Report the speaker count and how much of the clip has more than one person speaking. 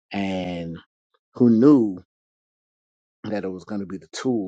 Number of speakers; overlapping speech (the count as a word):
one, no overlap